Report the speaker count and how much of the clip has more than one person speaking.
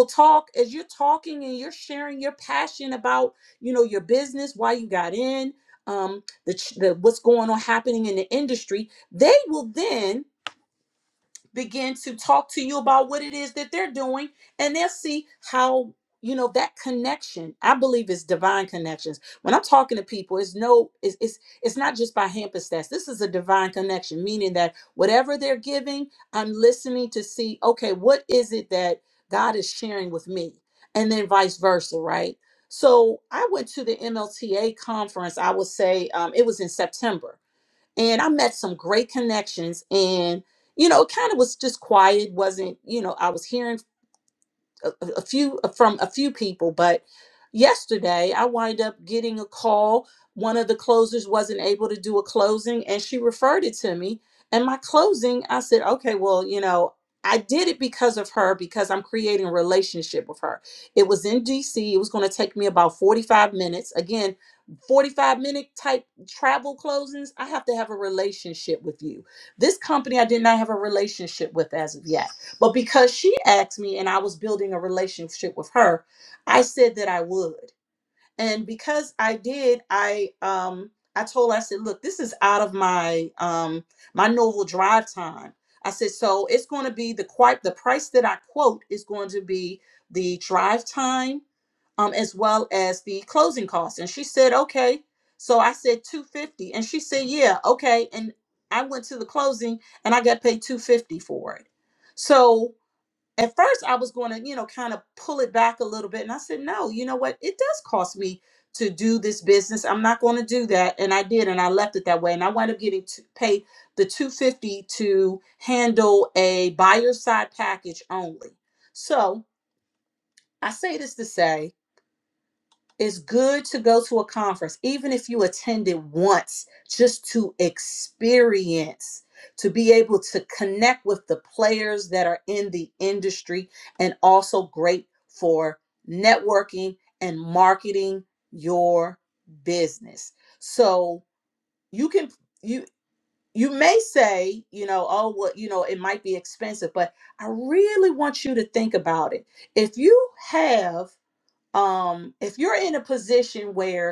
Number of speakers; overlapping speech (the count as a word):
one, no overlap